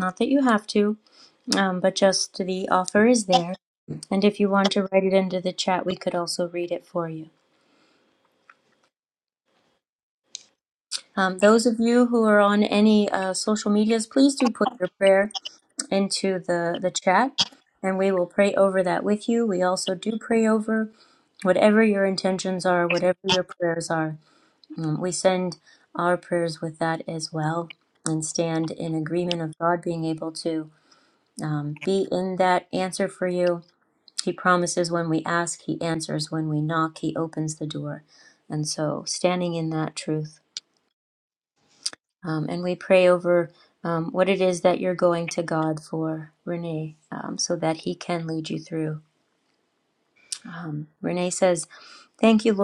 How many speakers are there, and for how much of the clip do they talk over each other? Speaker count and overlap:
1, no overlap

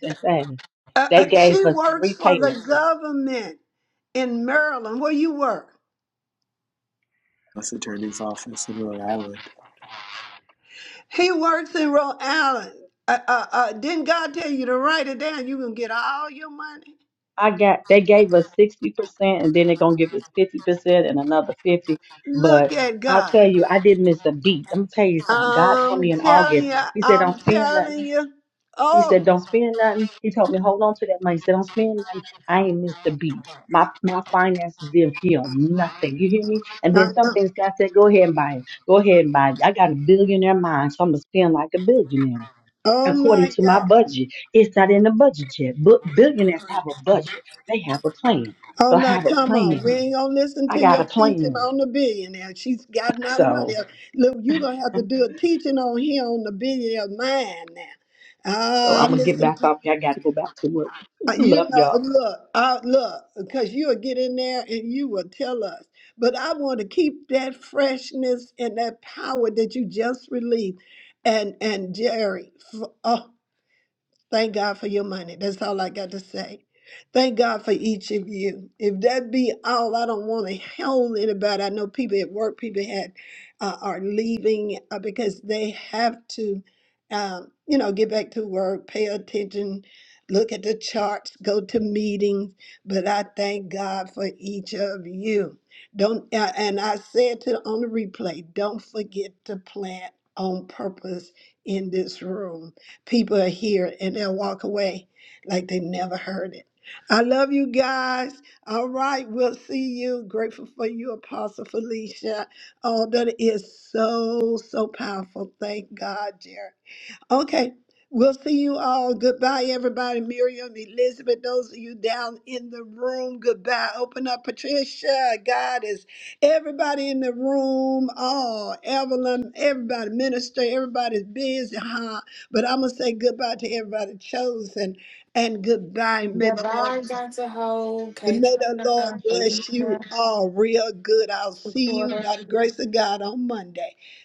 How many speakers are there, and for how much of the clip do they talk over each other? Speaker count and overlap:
4, about 9%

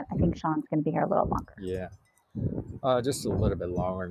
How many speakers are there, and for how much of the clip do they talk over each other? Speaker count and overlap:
2, no overlap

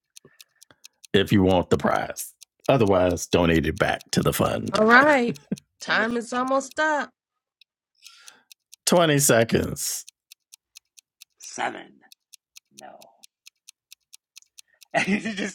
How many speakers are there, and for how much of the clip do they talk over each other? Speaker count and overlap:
3, about 3%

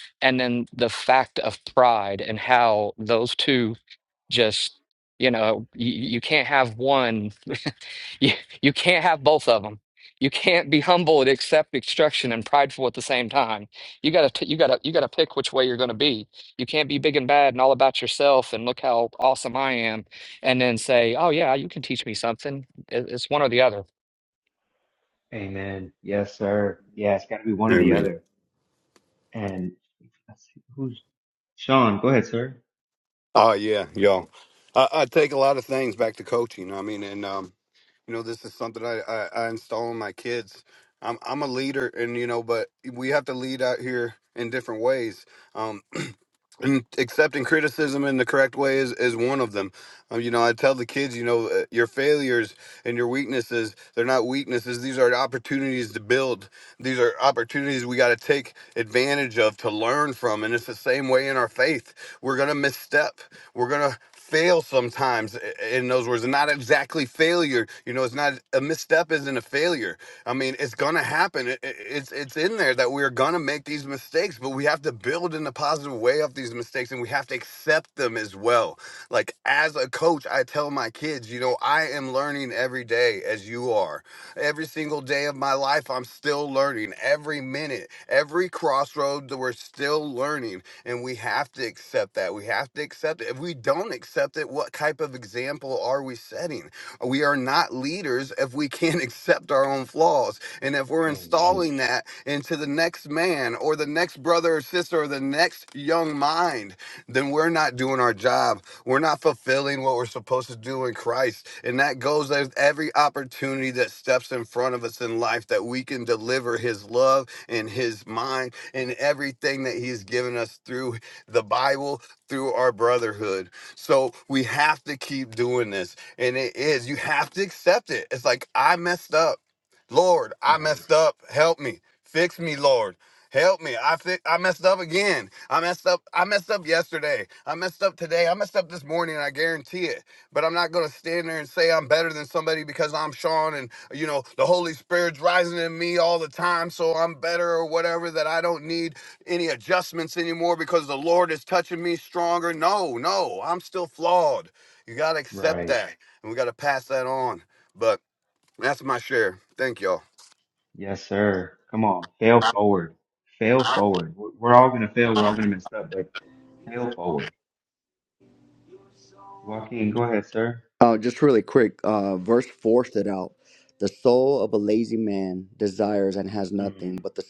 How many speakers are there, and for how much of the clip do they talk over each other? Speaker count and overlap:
4, about 1%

